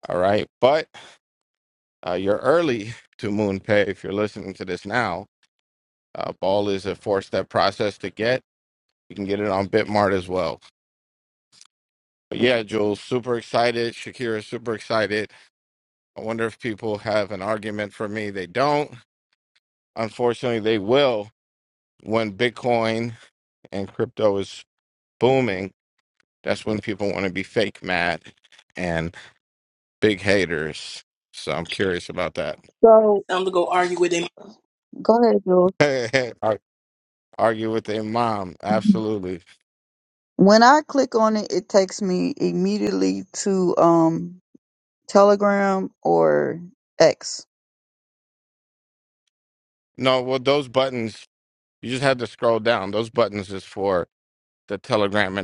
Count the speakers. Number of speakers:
three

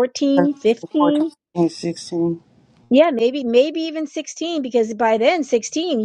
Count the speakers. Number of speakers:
two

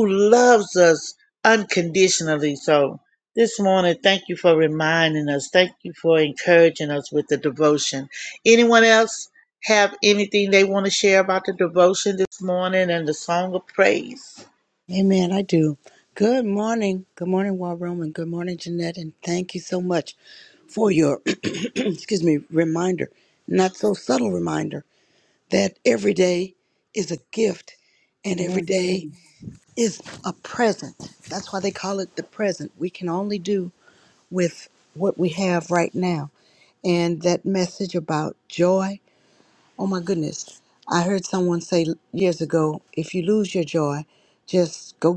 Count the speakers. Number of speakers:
two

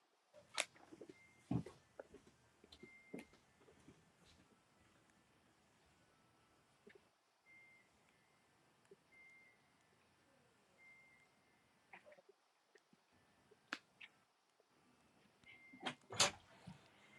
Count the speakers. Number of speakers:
zero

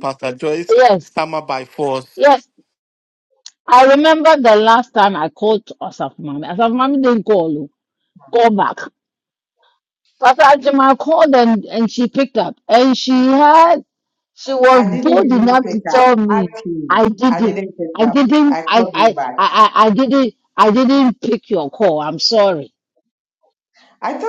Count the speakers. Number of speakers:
three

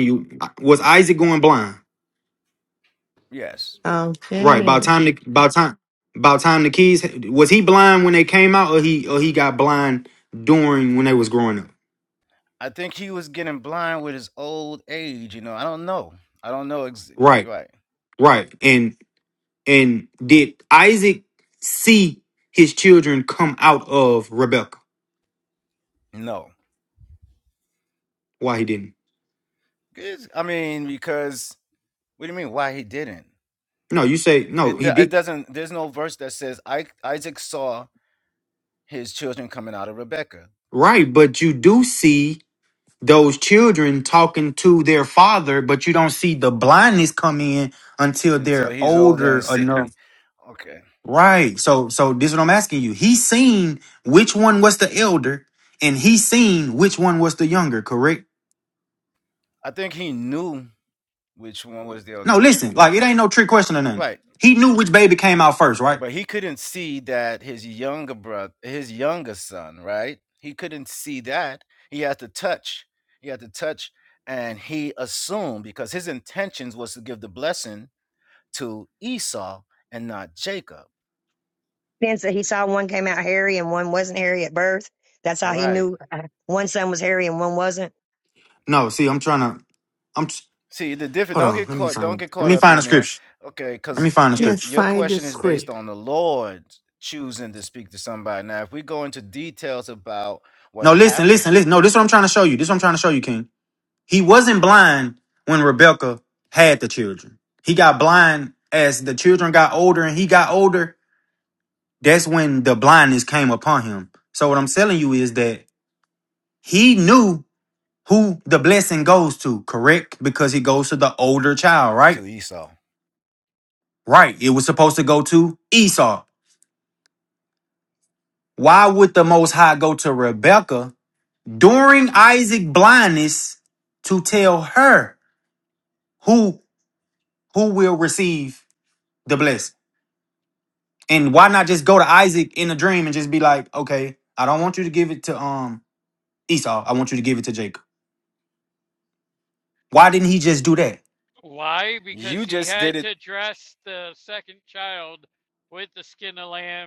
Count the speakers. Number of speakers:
five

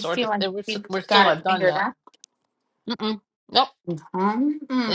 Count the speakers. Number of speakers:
two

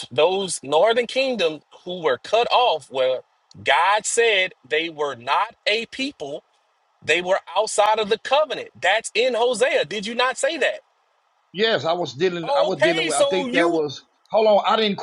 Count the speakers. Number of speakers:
two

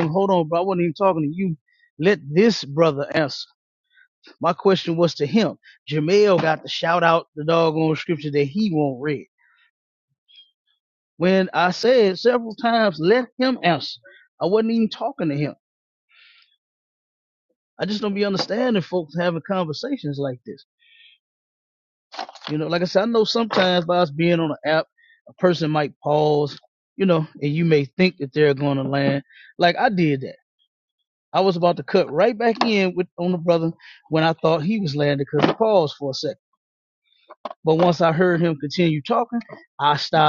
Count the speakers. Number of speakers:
one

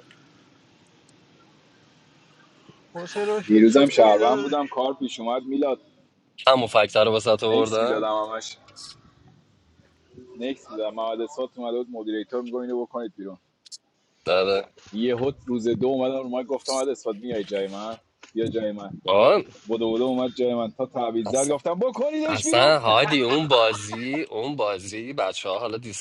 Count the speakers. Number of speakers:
three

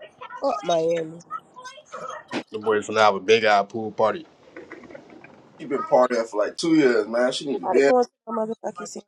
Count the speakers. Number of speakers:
three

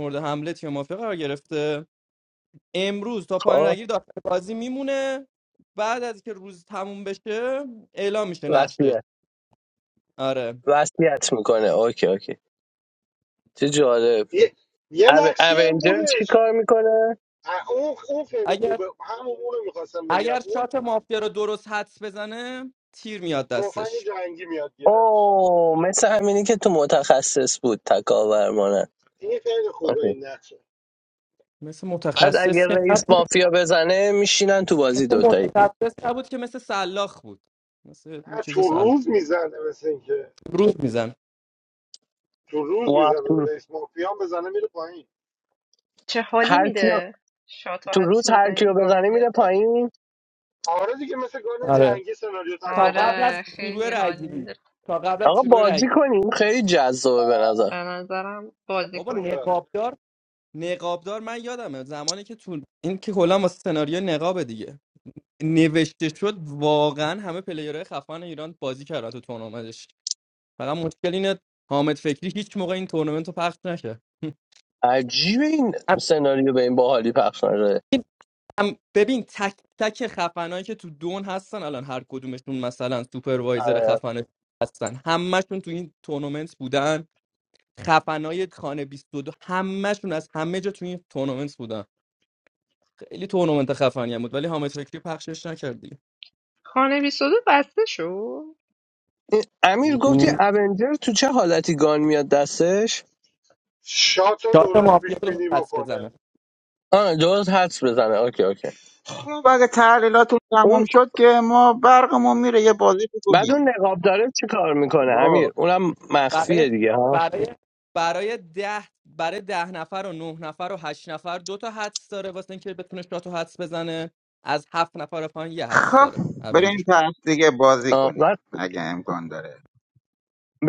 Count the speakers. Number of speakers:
five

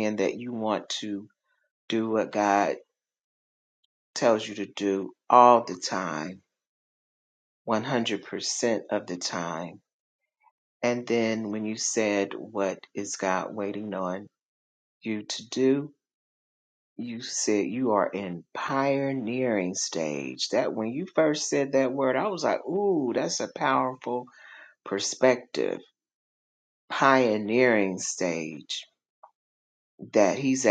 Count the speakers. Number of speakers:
one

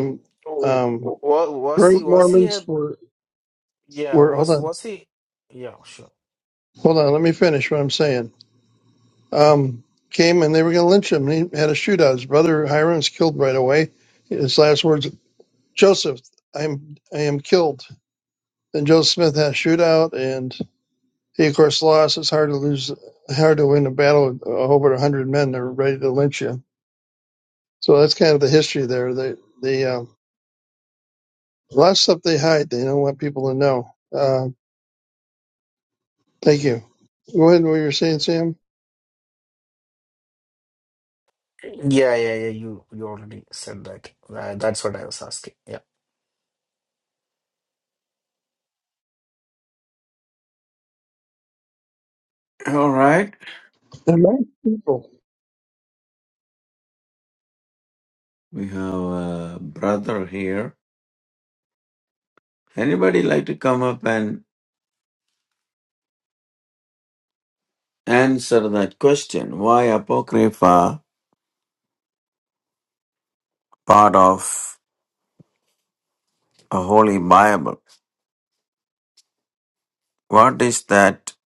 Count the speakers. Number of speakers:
three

